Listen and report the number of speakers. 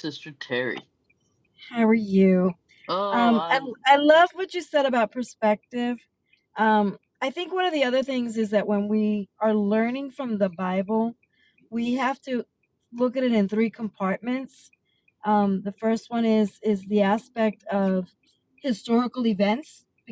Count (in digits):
2